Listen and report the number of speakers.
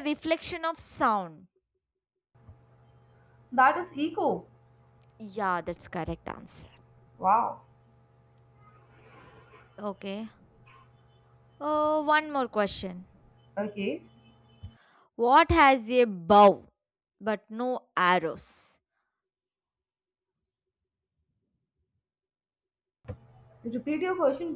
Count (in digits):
2